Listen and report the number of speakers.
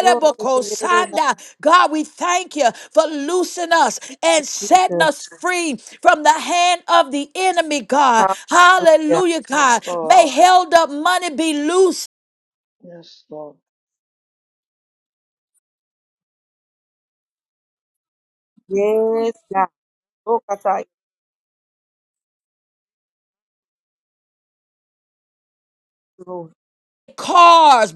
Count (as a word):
three